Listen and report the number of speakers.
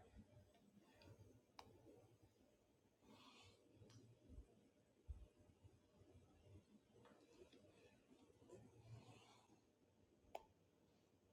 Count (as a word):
zero